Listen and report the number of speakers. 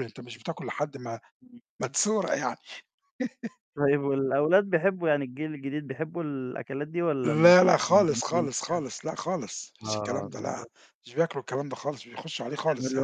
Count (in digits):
2